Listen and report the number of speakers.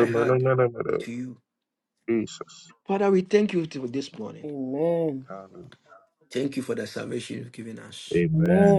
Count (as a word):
three